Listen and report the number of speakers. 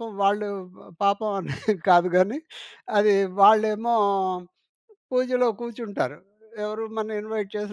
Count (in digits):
1